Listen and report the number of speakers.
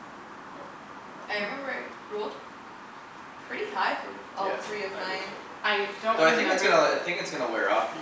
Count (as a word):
three